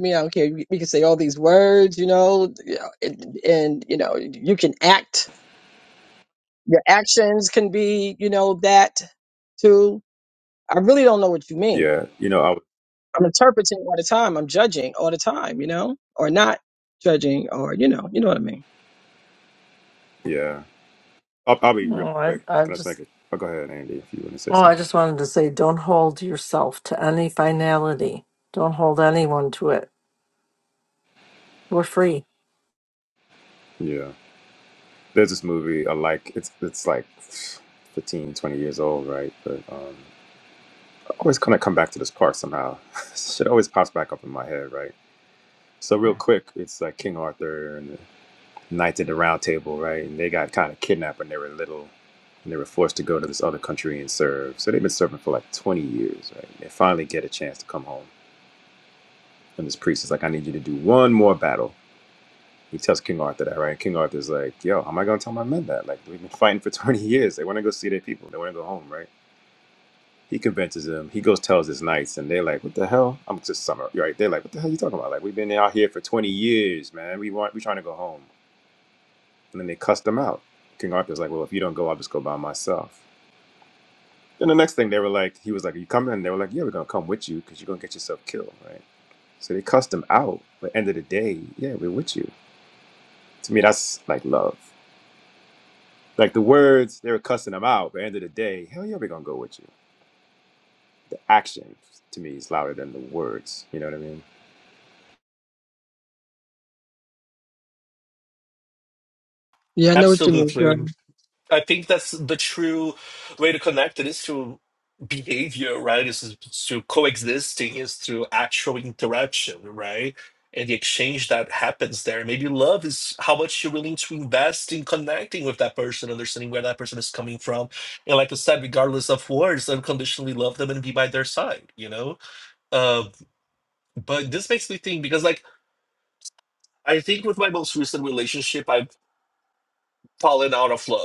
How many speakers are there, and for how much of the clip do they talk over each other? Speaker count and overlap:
four, about 1%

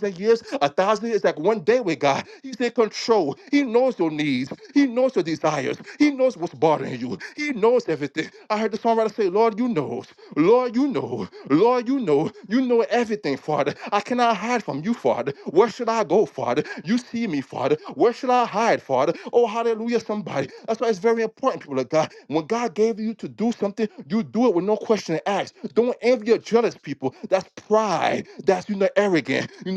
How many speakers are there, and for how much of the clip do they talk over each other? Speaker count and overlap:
one, no overlap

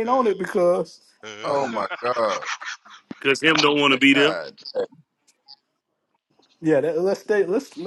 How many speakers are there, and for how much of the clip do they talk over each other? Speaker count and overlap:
three, about 3%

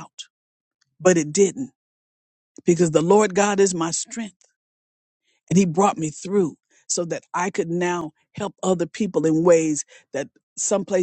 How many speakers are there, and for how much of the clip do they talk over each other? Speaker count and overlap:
one, no overlap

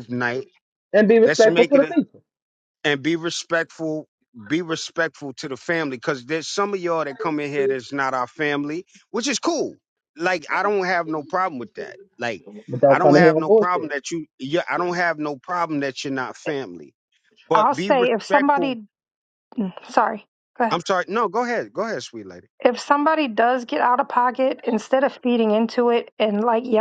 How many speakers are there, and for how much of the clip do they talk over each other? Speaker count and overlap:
three, about 11%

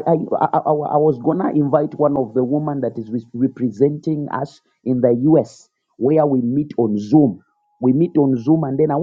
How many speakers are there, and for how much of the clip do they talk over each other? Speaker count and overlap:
one, no overlap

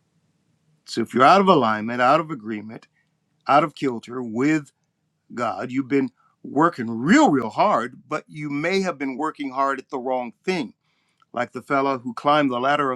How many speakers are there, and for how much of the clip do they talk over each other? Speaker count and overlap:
one, no overlap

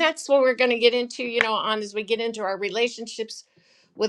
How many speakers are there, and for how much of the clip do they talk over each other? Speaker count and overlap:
one, no overlap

